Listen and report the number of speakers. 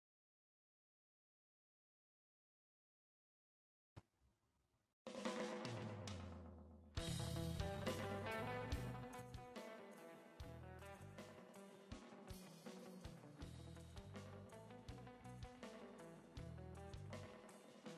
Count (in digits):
0